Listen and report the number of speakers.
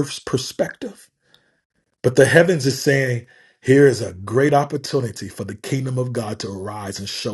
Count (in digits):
1